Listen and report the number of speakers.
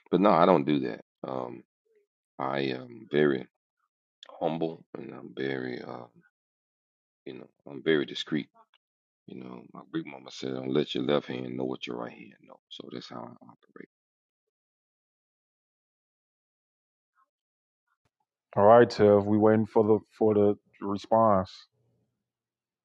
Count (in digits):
2